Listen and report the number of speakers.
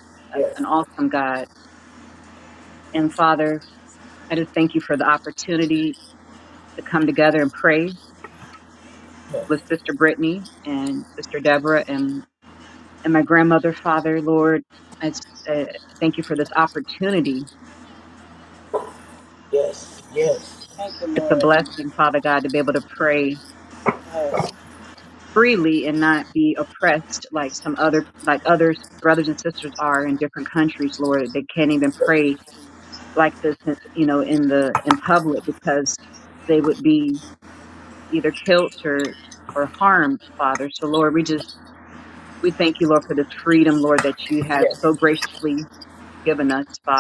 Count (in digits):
3